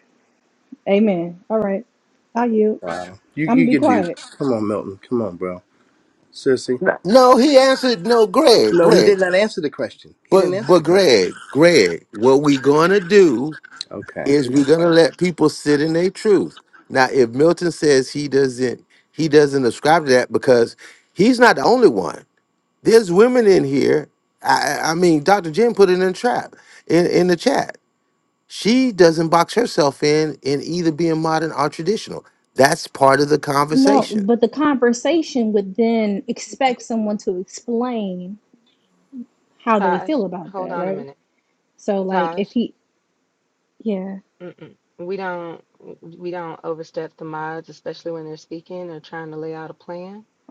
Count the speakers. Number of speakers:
4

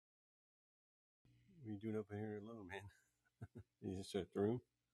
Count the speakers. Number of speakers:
1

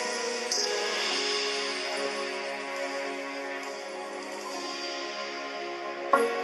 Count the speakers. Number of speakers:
0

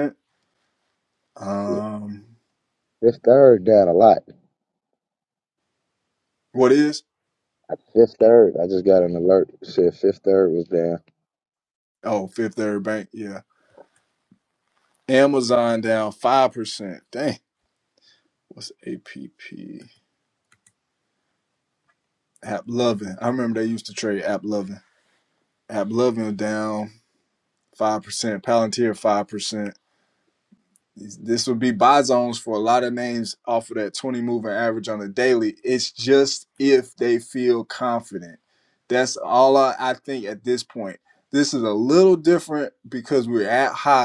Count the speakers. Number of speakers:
2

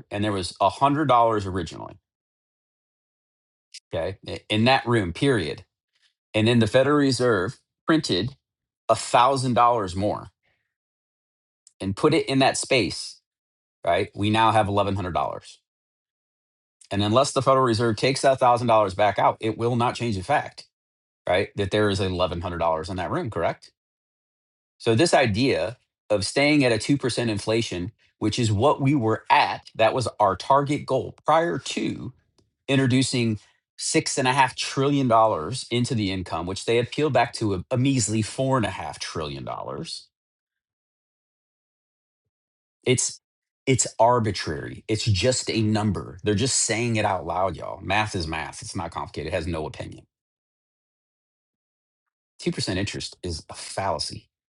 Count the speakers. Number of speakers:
1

